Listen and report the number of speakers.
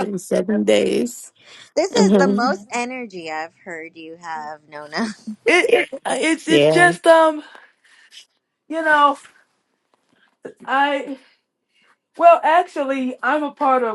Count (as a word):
three